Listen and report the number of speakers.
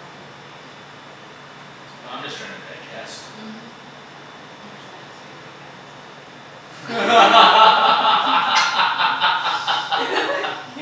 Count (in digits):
1